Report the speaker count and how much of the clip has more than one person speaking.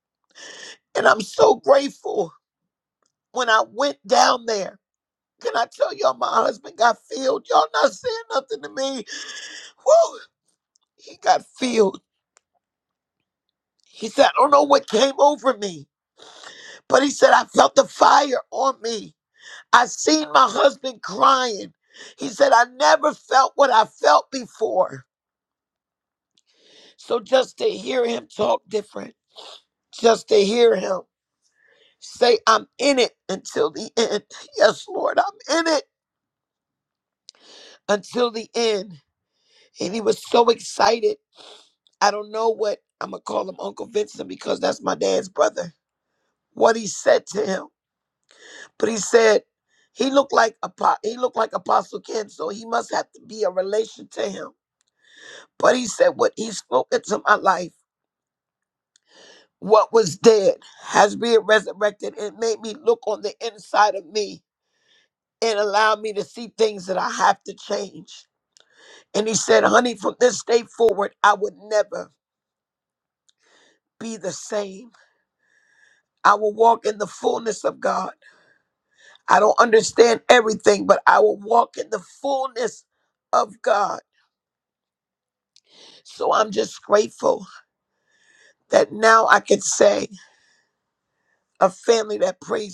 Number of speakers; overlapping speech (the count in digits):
1, no overlap